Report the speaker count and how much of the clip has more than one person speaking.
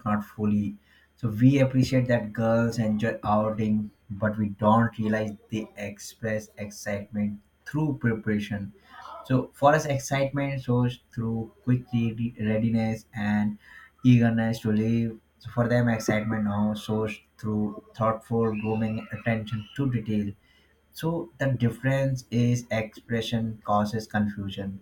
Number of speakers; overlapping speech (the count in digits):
1, no overlap